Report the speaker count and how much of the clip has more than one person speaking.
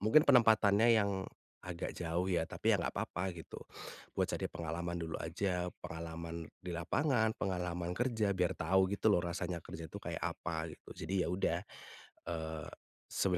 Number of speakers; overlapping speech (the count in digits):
1, no overlap